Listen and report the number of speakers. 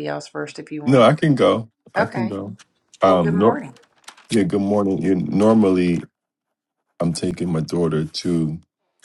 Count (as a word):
two